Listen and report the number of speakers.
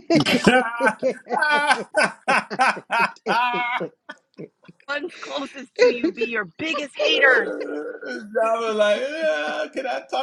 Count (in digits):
3